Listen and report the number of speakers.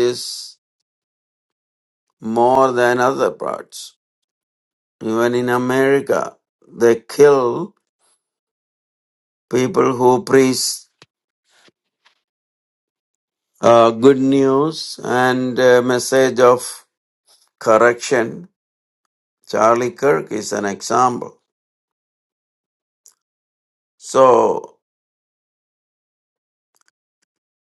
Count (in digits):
1